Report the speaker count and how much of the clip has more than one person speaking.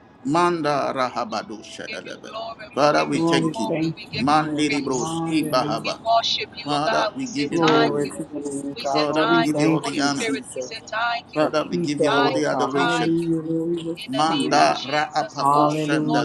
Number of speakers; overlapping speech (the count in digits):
3, about 73%